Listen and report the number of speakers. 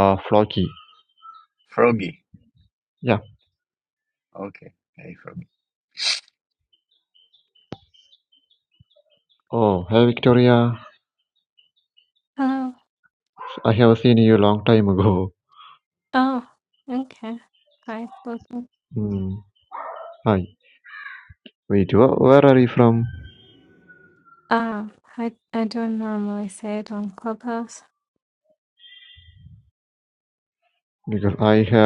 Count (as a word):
three